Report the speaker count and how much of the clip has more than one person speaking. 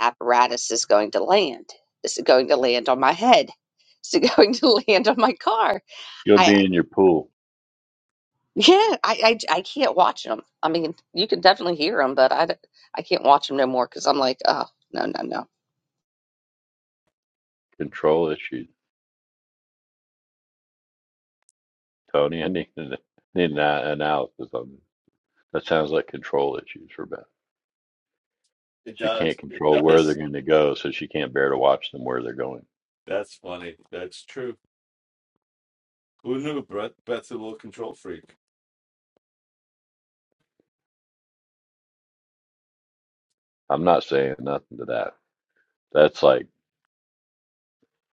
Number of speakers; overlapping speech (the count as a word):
three, about 3%